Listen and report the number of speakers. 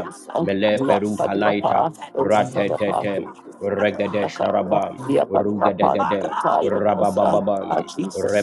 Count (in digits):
2